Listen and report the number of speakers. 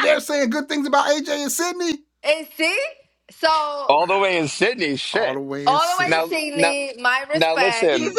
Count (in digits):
3